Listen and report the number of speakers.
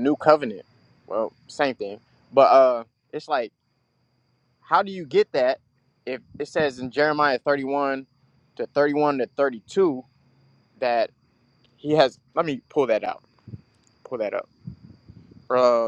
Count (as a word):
one